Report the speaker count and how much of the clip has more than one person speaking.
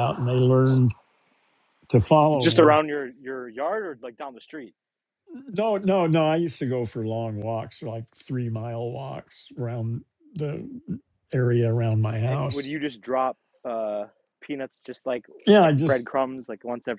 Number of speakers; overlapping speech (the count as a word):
two, about 8%